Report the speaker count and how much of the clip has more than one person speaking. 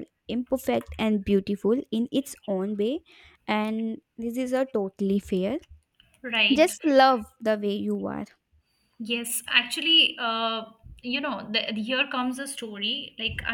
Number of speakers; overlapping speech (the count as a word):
two, about 2%